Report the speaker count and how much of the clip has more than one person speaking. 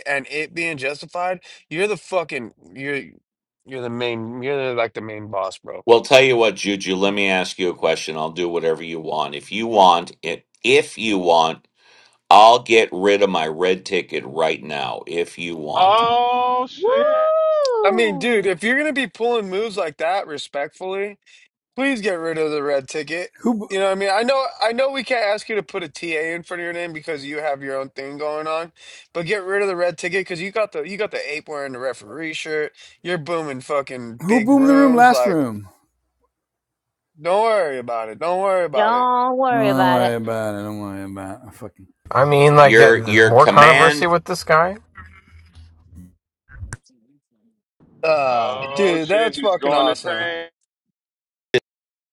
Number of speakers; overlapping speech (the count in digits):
6, about 11%